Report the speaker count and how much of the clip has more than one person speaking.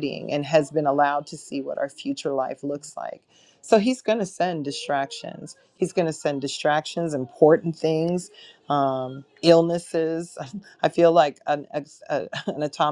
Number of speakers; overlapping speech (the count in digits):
1, no overlap